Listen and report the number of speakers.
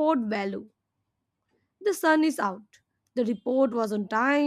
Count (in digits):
1